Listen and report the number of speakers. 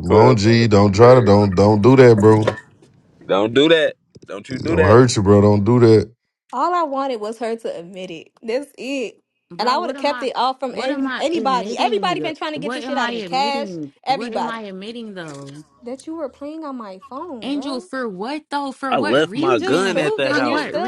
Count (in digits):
4